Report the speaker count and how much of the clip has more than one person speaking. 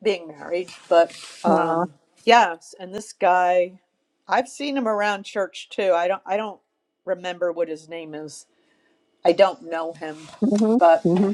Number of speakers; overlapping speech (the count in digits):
2, about 5%